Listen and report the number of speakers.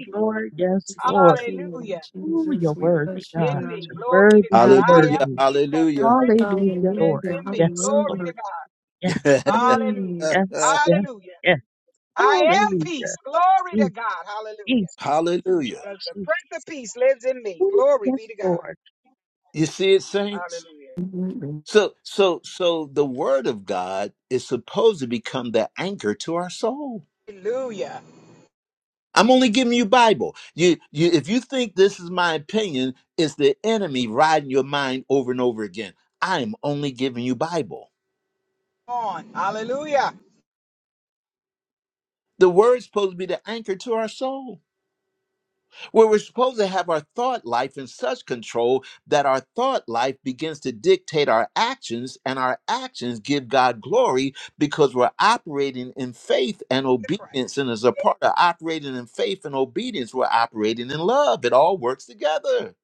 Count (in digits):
4